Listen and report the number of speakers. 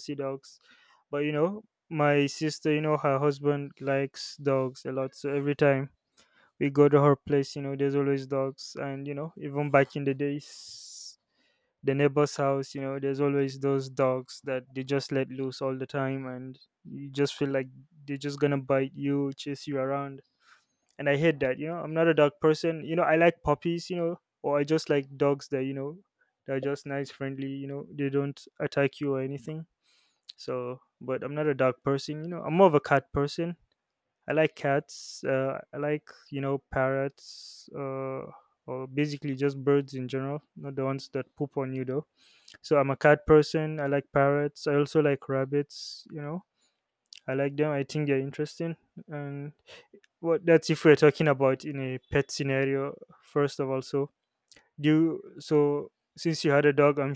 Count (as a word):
one